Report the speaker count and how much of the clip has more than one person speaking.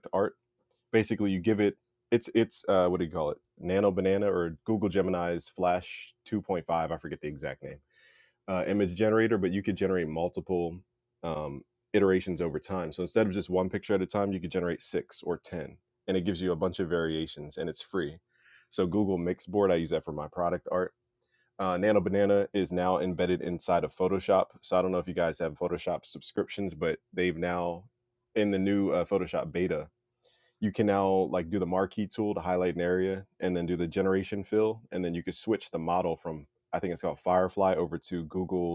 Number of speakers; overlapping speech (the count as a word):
one, no overlap